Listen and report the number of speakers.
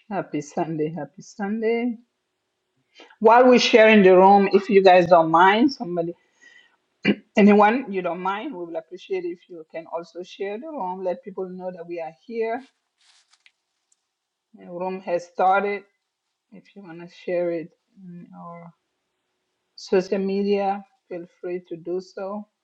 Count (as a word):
one